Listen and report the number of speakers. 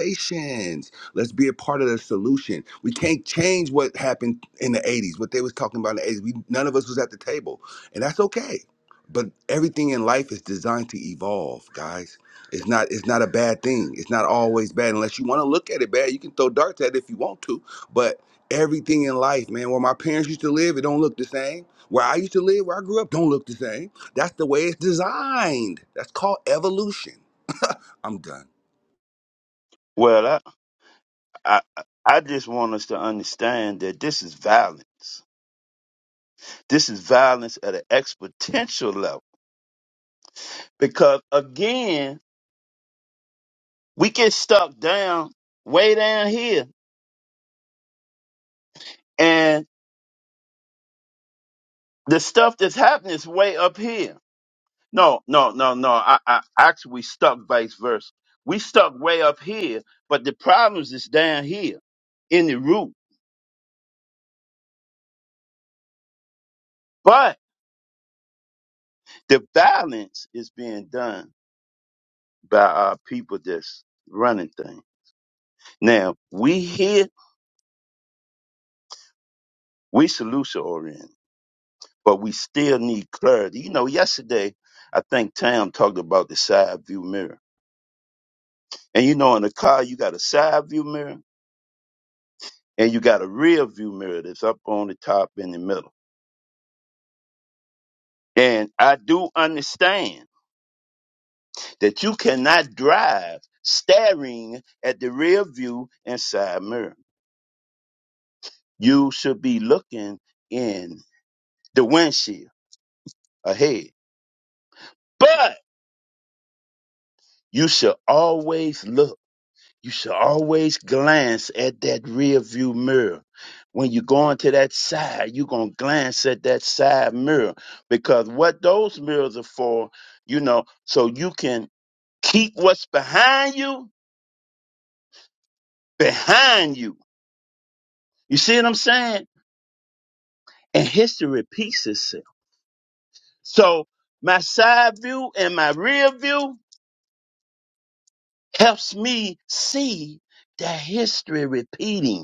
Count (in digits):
2